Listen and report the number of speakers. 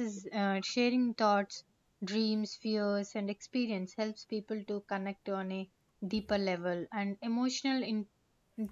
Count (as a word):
one